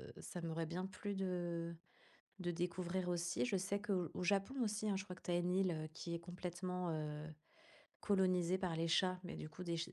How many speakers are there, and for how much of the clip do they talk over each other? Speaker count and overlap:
one, no overlap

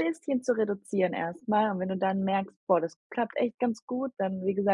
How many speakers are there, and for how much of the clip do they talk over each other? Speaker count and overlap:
one, no overlap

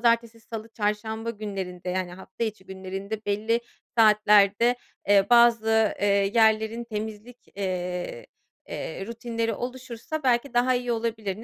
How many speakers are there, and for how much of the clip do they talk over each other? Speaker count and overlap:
one, no overlap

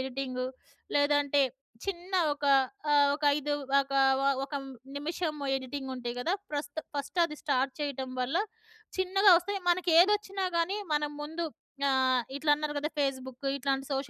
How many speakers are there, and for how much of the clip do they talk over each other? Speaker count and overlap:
one, no overlap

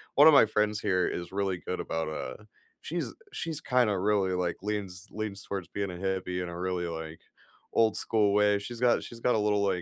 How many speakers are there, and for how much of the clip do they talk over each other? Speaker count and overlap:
one, no overlap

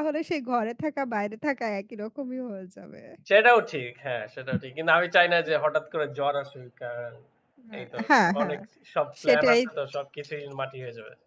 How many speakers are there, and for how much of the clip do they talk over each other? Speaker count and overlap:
two, about 9%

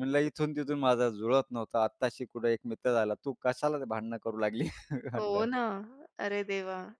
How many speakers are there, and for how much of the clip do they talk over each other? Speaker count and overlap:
two, about 5%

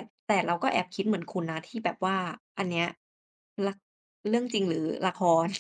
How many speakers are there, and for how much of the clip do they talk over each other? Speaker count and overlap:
one, no overlap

